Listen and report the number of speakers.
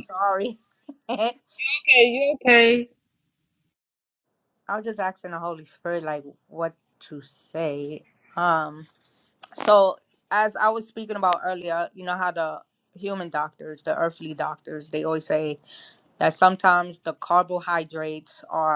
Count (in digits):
2